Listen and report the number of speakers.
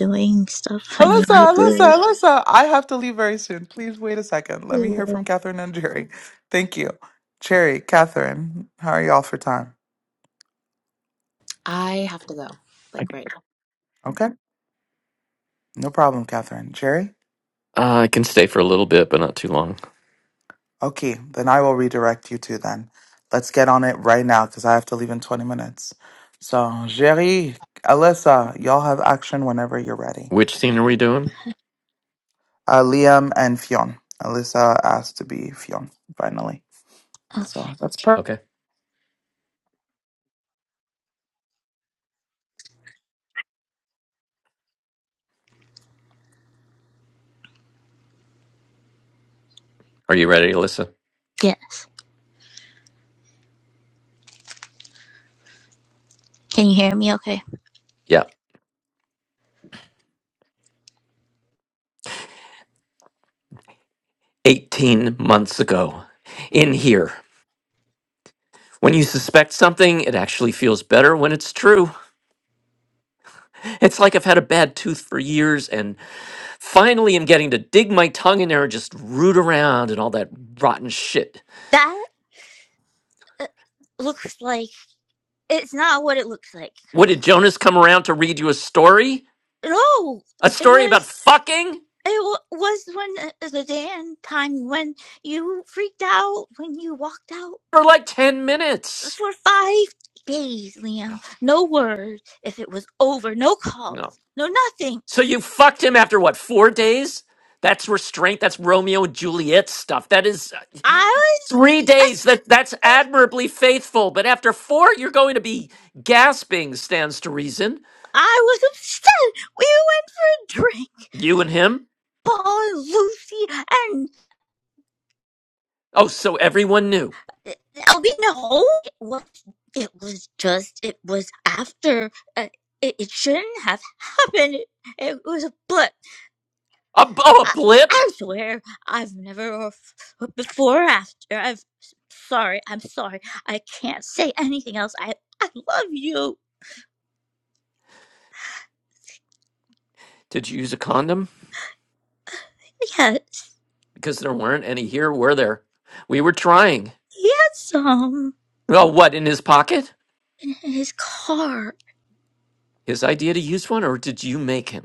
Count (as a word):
four